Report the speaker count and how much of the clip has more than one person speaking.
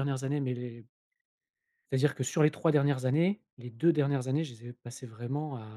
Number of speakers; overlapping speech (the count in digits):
1, no overlap